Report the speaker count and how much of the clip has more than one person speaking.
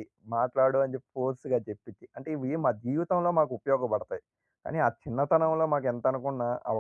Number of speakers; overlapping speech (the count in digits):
1, no overlap